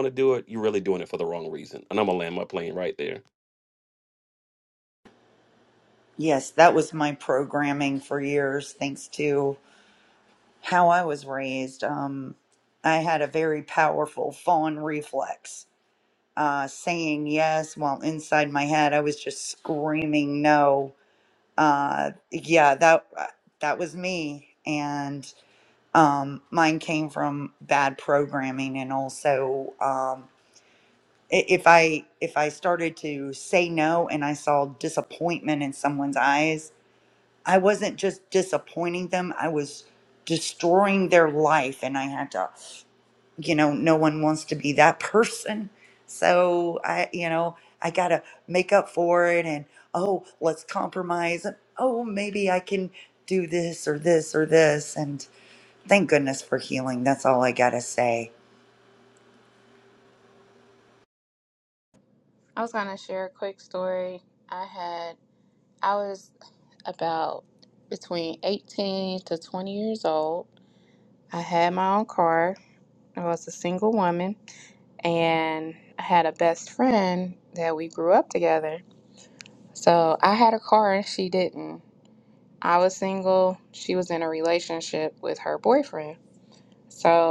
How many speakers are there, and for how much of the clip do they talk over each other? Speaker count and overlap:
3, no overlap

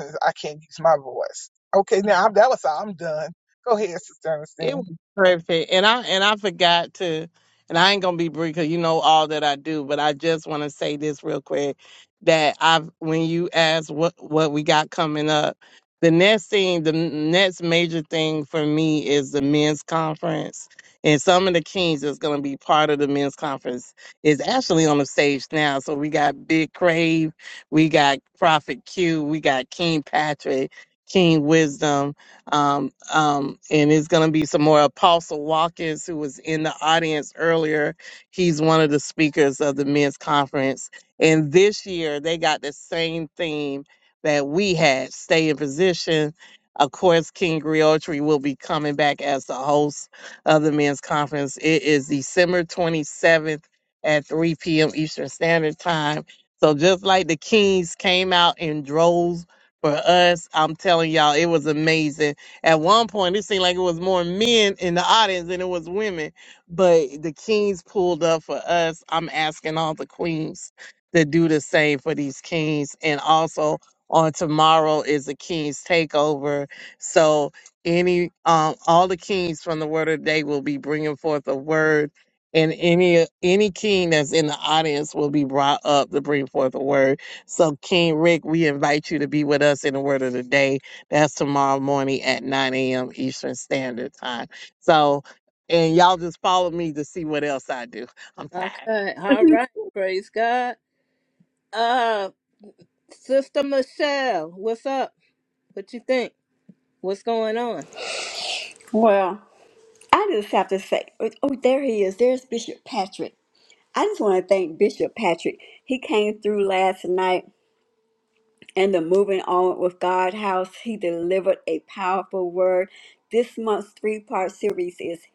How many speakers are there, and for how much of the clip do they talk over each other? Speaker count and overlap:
4, under 1%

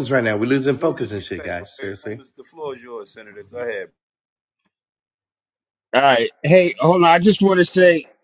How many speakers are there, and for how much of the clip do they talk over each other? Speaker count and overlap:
3, about 17%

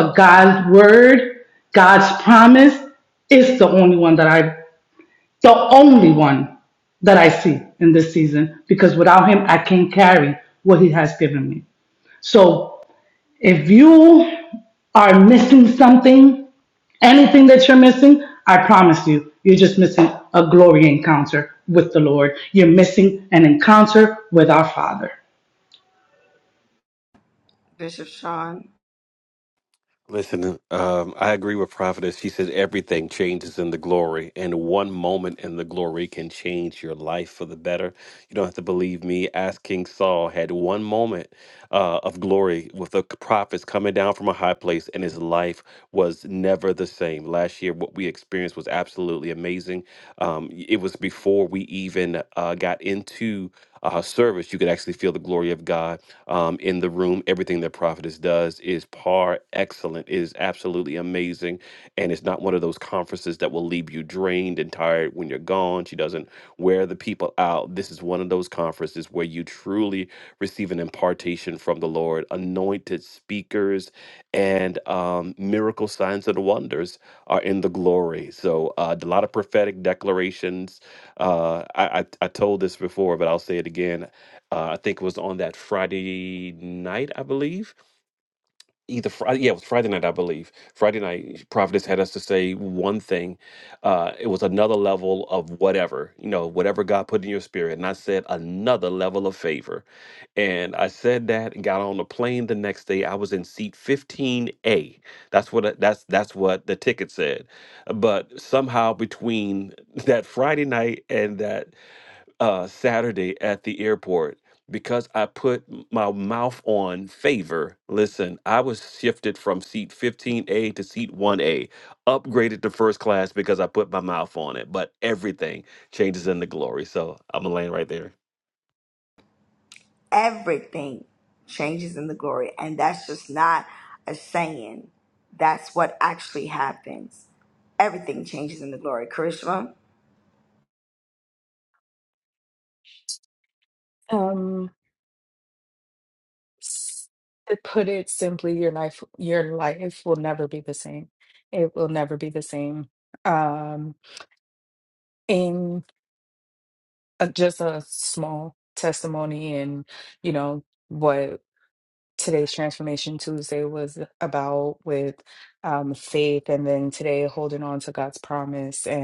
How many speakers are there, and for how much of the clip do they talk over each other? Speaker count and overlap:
4, no overlap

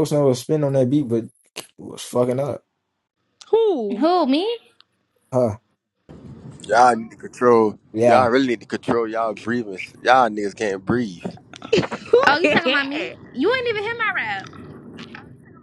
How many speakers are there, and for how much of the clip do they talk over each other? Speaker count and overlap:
4, about 4%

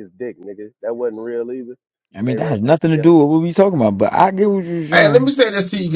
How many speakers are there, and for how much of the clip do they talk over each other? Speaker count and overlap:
3, about 20%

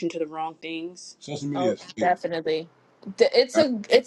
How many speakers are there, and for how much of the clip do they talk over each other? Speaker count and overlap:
2, about 10%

